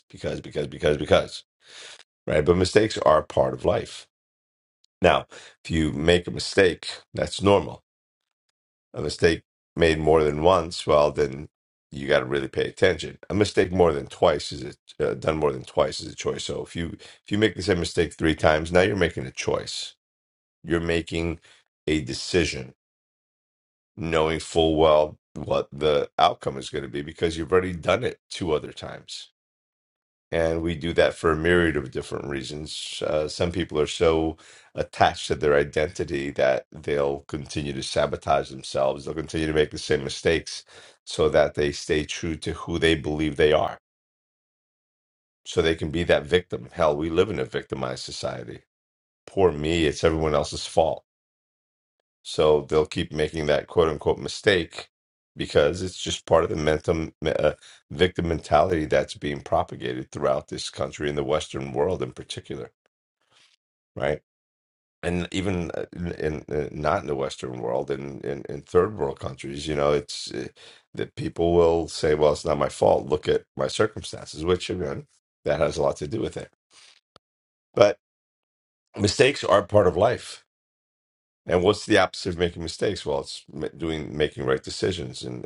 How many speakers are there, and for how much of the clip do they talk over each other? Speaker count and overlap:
1, no overlap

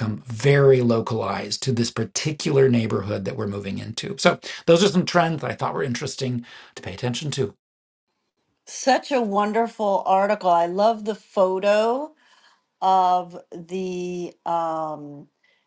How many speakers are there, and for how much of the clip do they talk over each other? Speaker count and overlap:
2, no overlap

